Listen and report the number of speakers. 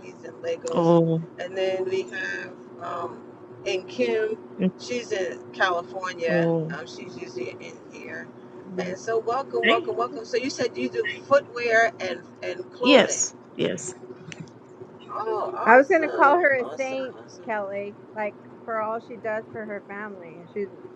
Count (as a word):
three